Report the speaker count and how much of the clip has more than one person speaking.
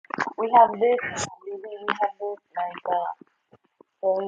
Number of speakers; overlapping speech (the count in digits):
1, no overlap